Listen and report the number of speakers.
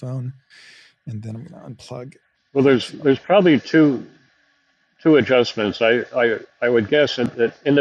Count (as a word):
two